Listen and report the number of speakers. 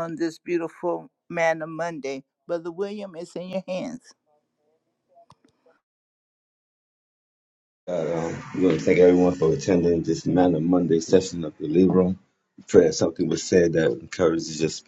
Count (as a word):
two